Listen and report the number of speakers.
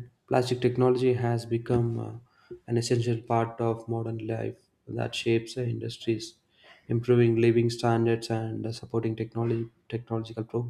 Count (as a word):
one